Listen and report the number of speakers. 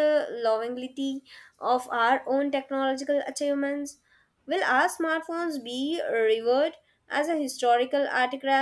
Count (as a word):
one